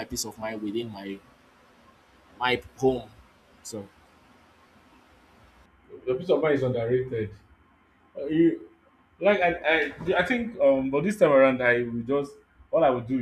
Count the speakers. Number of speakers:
2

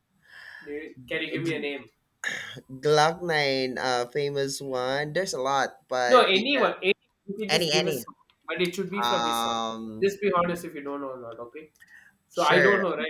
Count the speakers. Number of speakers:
2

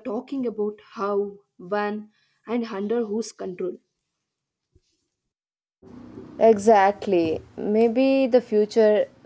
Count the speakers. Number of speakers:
2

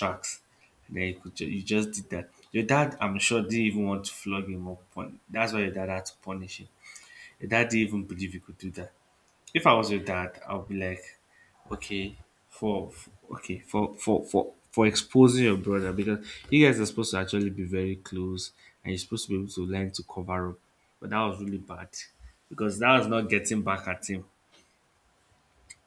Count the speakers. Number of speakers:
1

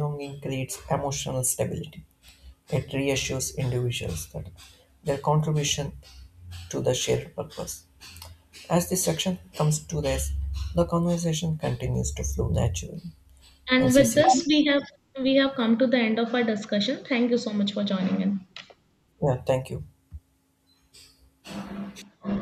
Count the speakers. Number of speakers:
2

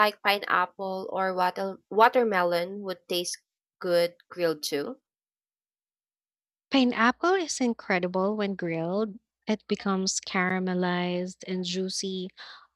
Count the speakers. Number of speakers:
2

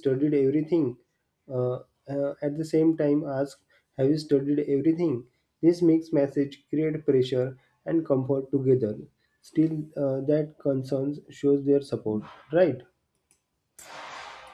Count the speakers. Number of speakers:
1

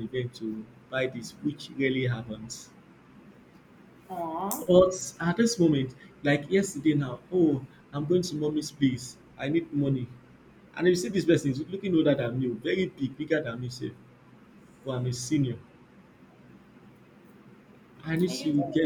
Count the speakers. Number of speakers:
2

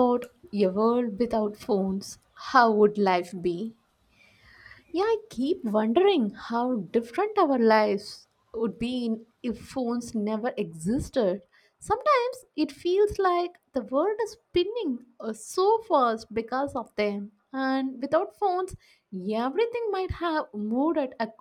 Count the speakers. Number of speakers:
1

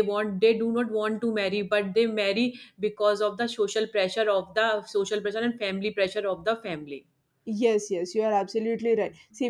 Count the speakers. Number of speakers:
2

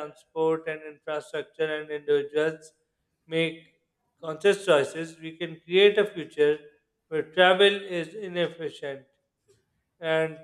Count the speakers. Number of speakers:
1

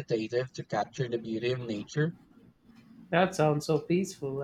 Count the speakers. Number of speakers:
2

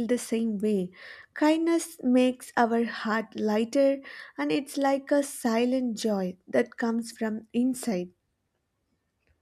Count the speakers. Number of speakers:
1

